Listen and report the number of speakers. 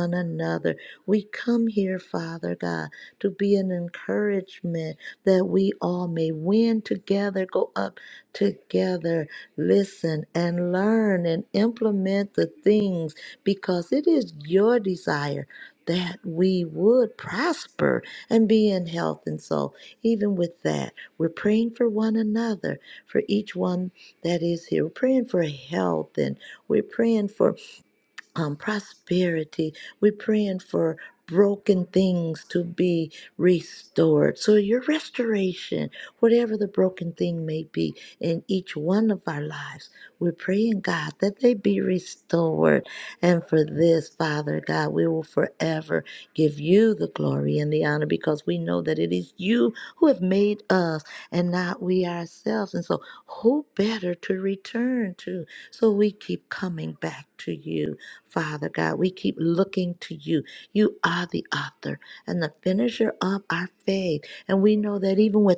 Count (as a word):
one